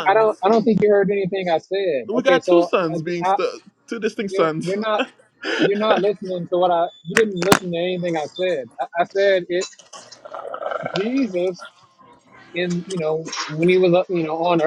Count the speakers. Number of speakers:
2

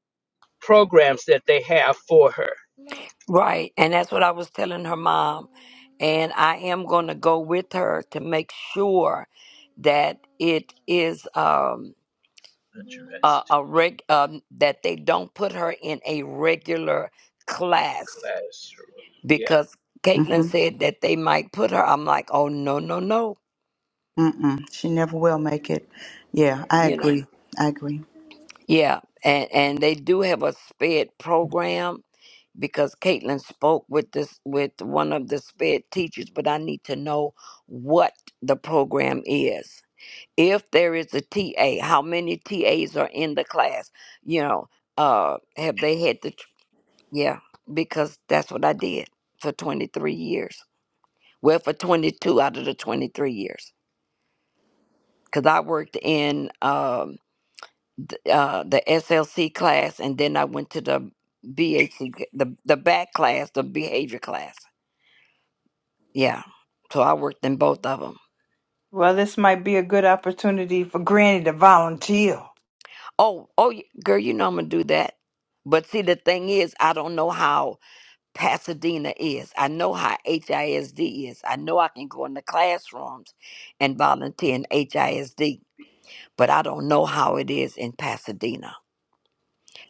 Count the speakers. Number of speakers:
4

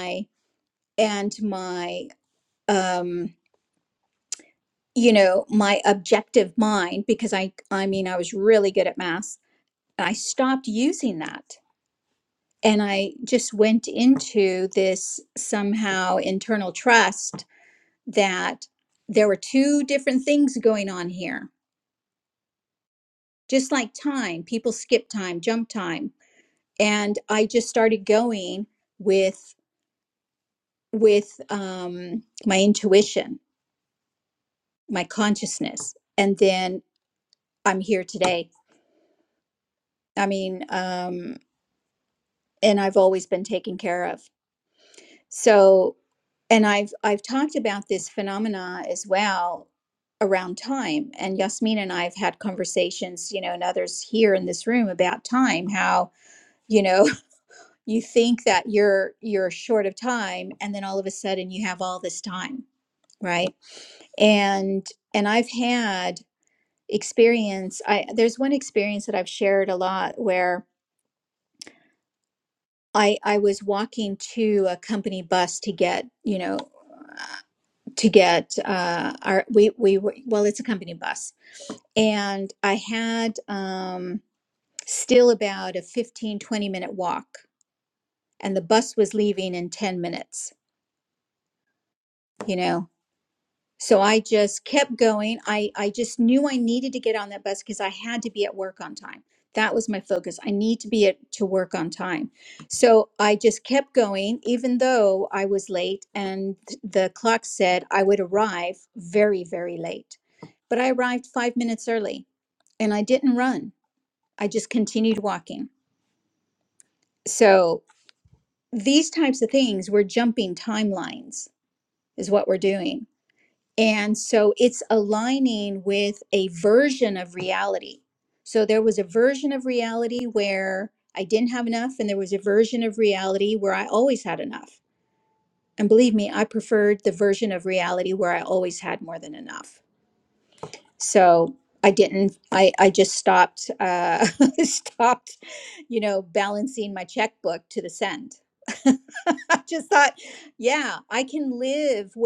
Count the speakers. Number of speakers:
1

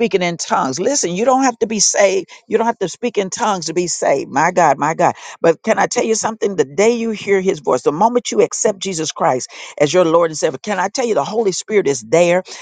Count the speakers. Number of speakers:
1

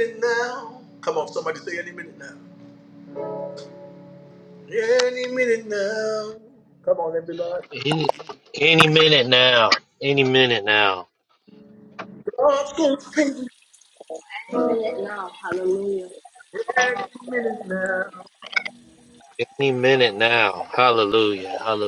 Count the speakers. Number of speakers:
3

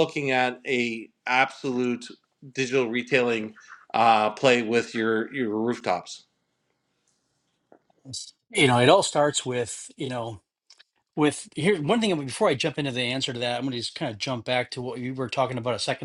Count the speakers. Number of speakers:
2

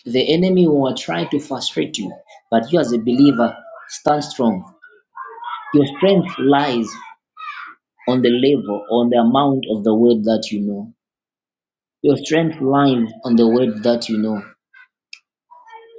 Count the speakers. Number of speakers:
1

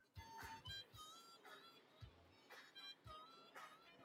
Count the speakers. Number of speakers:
0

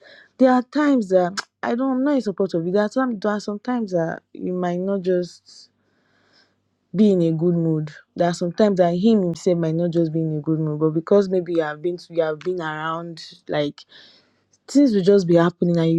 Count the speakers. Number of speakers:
1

